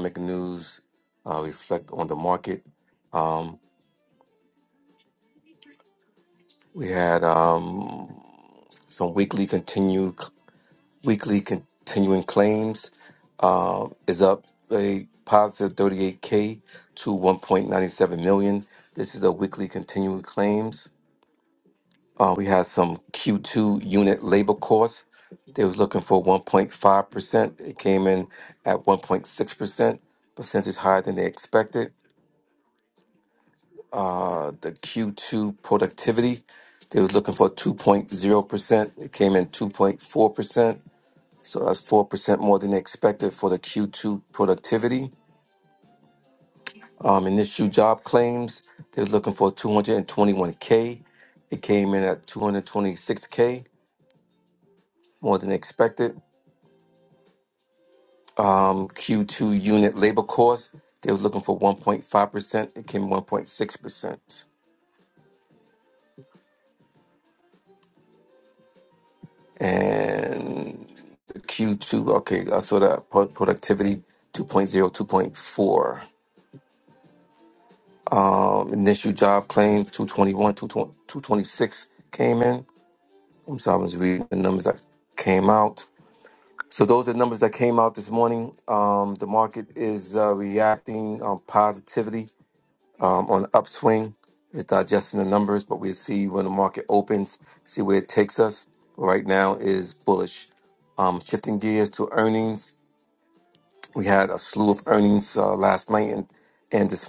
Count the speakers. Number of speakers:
1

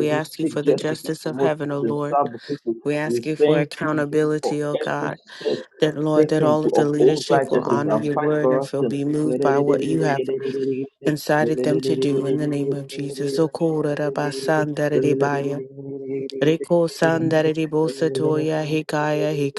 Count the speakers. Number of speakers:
2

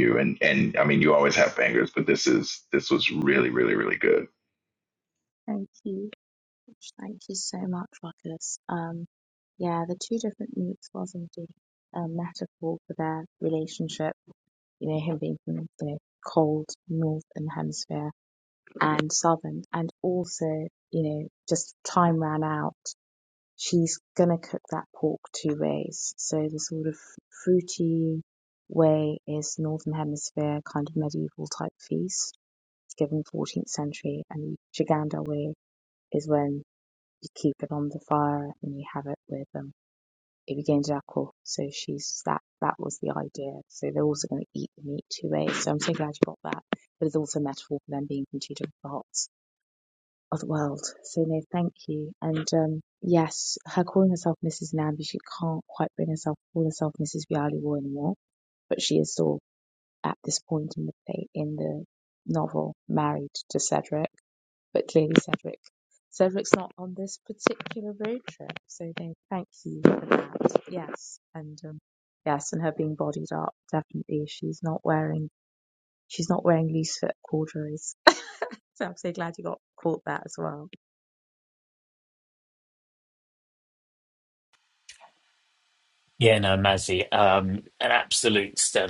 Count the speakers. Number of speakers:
3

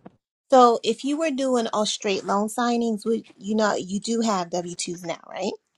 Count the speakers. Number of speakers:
1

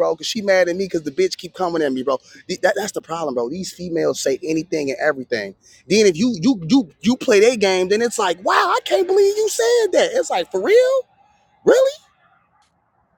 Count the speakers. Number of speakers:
1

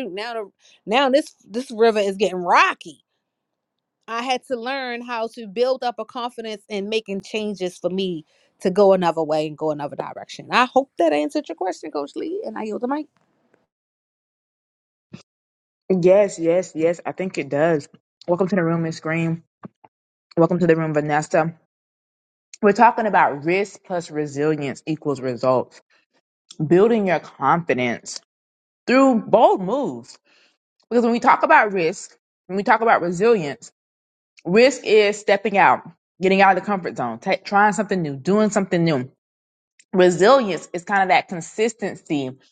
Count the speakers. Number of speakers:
2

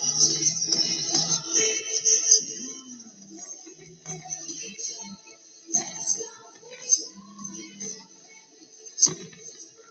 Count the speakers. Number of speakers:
0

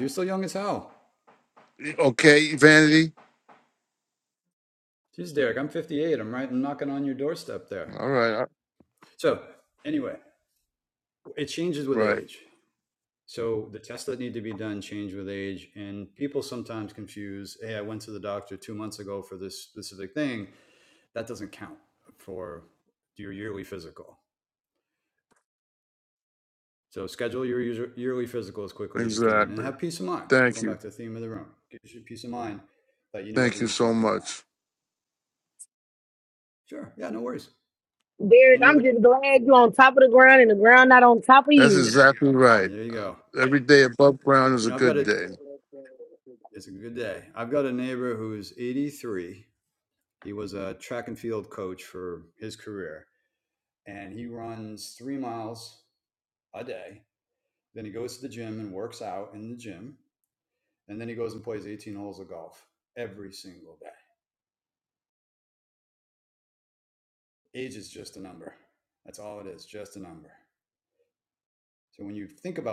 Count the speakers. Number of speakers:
3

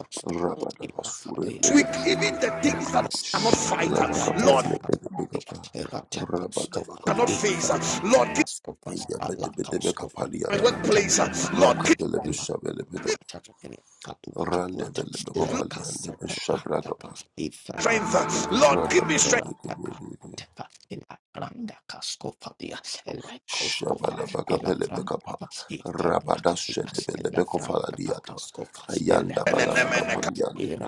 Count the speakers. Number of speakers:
3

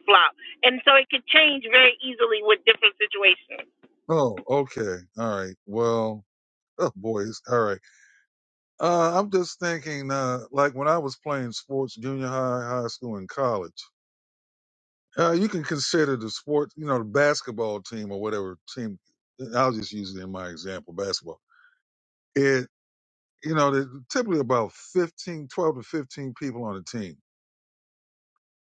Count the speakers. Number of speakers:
2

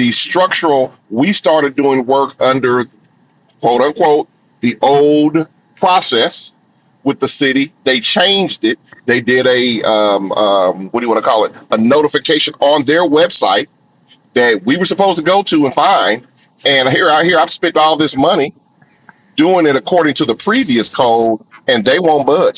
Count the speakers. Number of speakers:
1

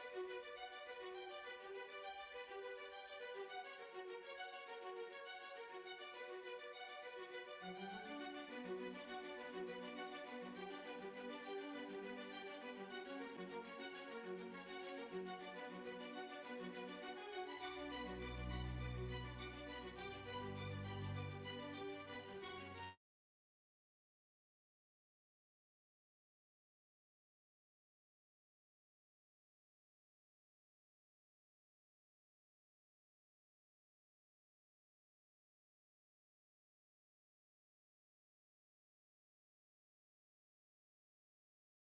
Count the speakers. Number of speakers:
0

